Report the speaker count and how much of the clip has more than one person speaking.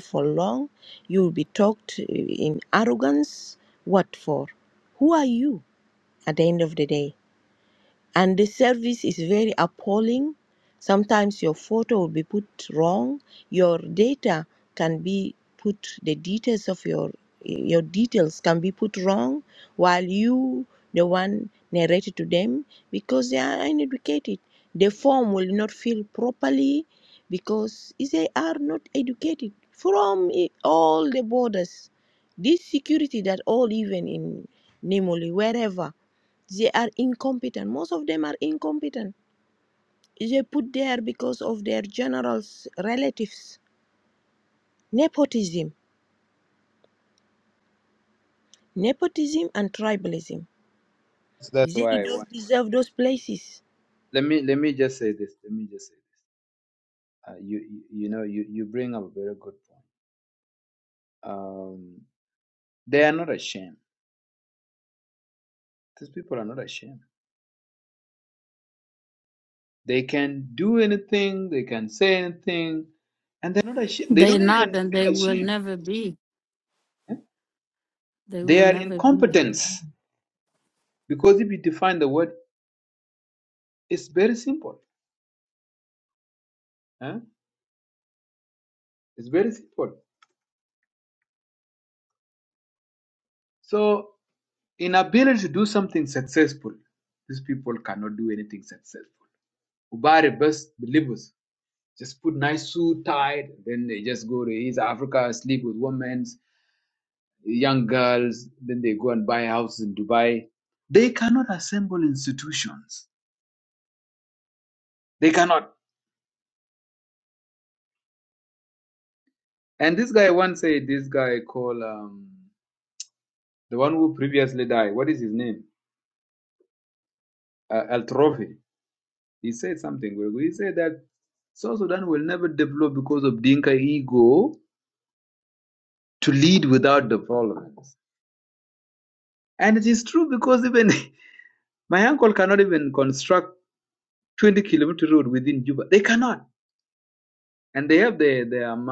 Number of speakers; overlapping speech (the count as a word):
three, about 2%